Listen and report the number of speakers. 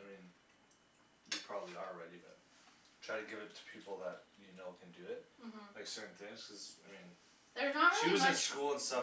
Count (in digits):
2